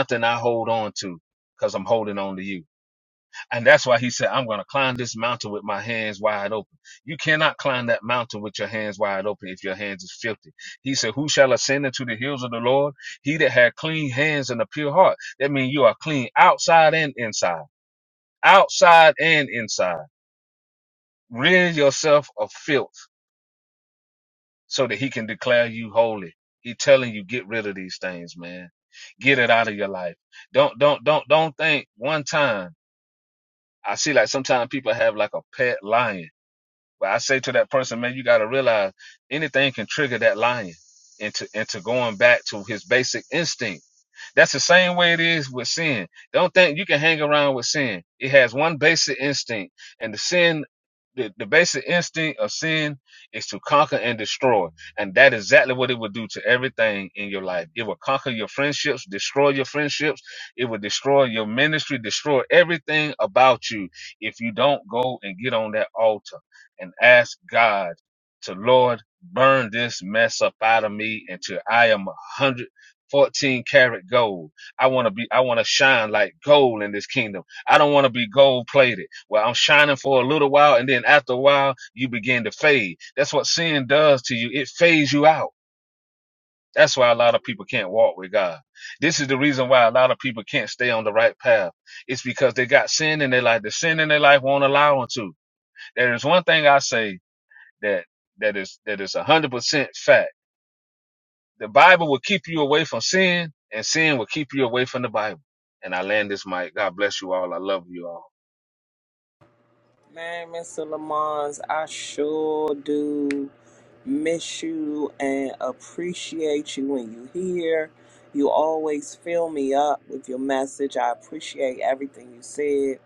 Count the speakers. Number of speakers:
two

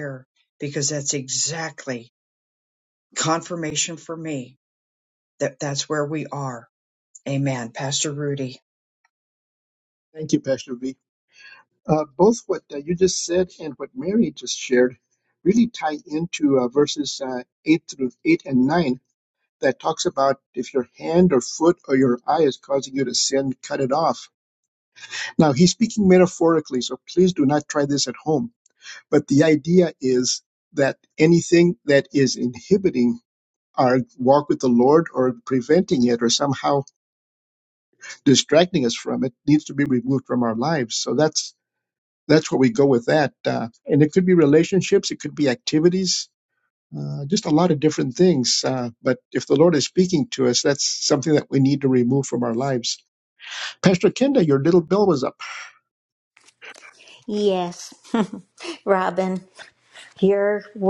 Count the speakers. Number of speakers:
three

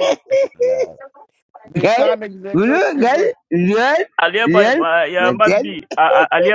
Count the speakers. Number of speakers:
three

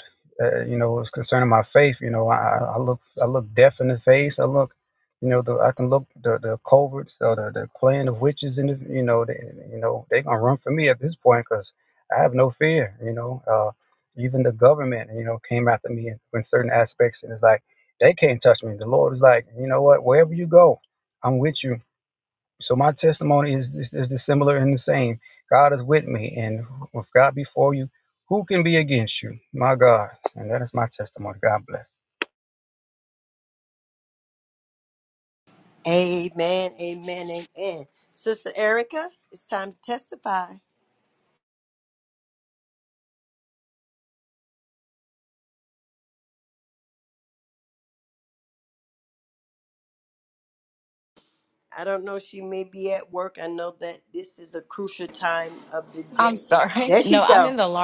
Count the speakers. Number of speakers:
three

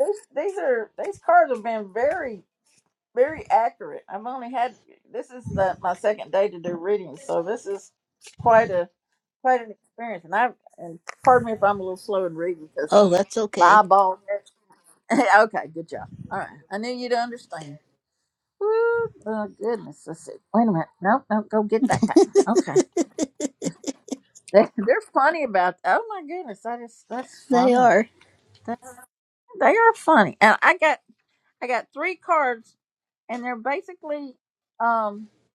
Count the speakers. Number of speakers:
two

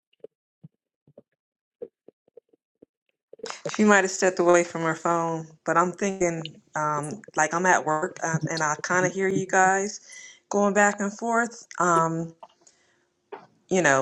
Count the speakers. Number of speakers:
one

